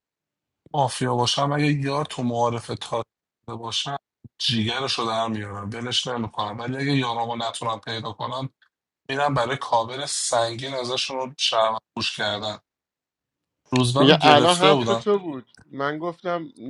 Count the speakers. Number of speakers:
2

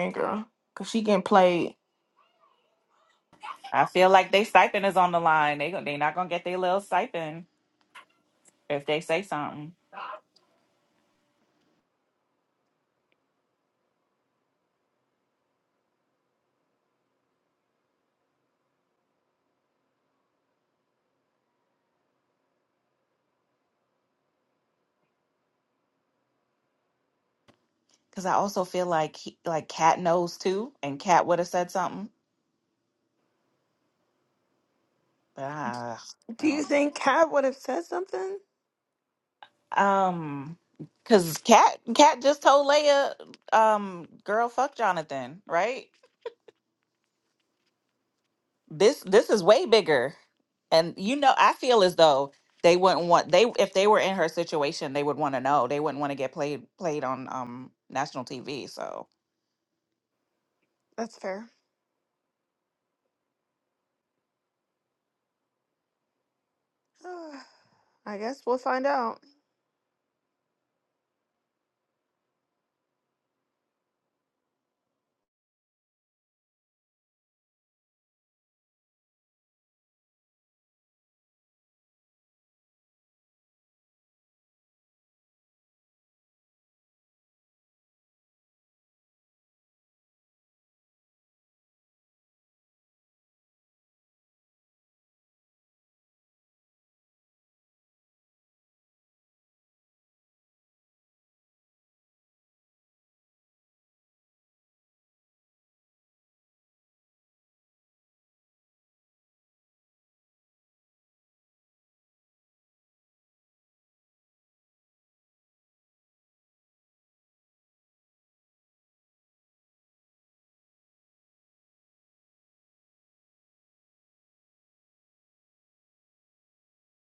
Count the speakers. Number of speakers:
3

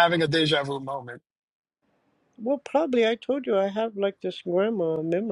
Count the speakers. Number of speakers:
2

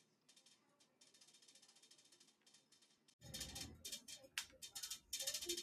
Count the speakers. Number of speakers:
0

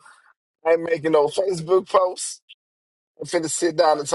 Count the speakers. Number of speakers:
1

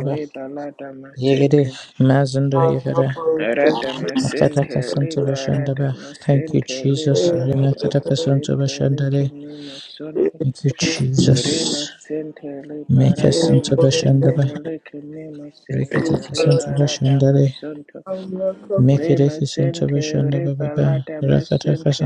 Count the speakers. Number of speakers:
3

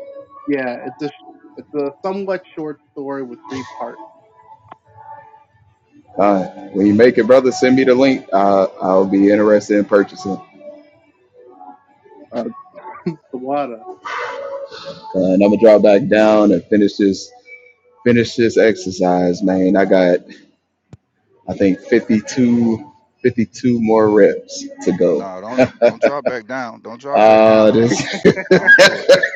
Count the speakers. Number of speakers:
3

